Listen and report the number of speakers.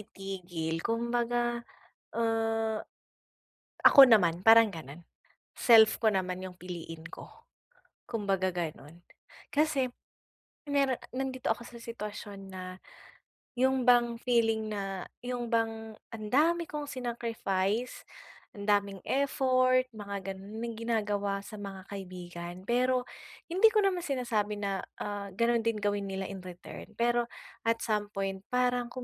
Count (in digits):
1